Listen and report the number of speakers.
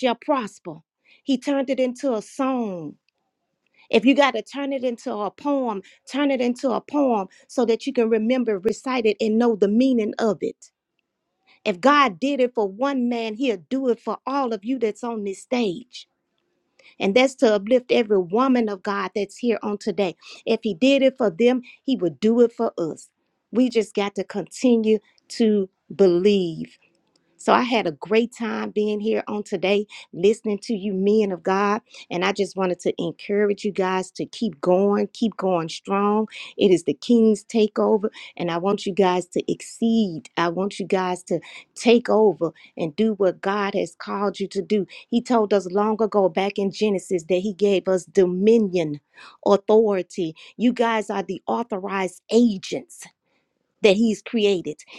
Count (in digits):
1